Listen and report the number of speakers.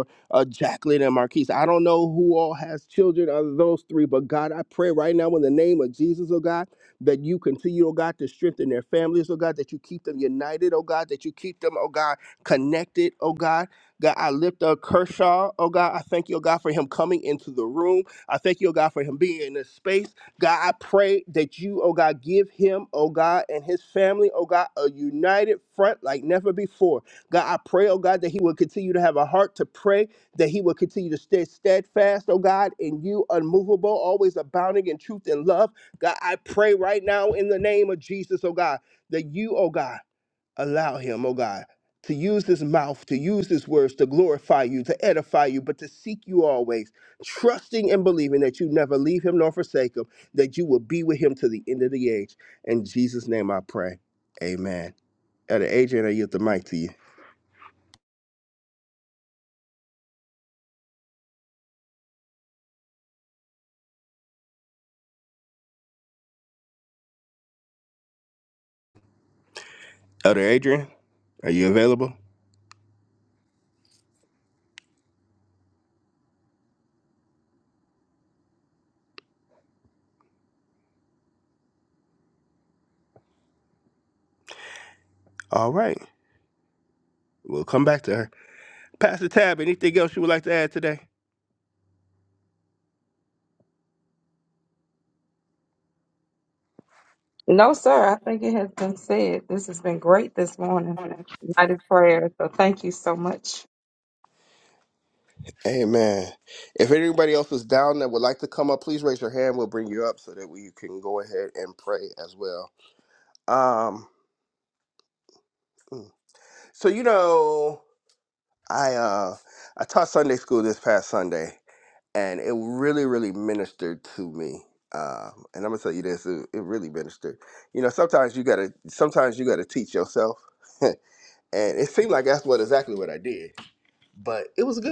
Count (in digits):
2